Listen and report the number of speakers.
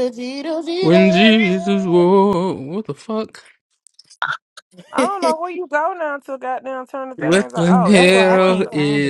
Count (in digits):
3